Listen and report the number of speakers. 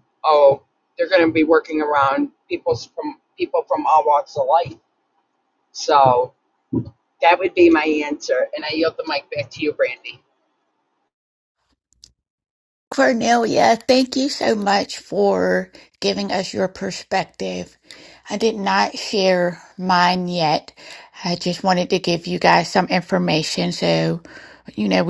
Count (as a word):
two